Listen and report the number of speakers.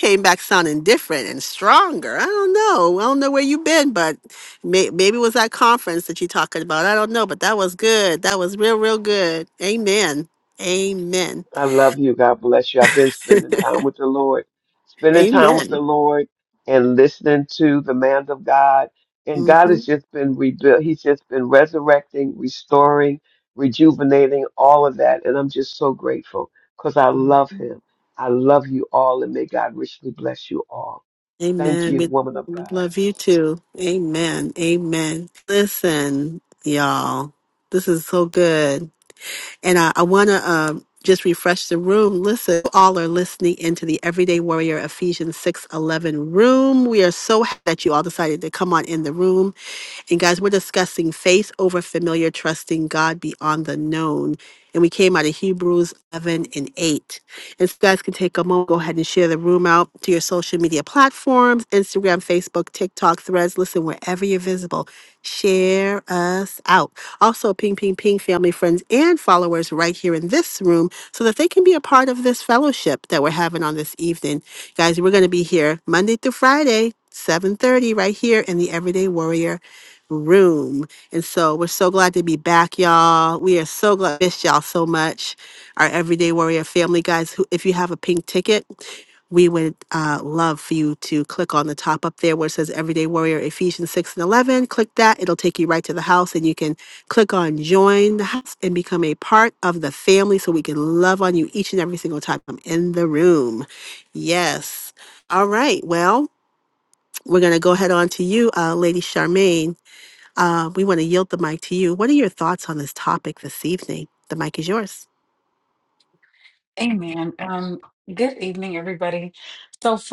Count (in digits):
3